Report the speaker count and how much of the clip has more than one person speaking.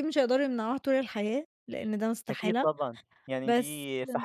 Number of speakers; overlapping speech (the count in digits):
2, about 13%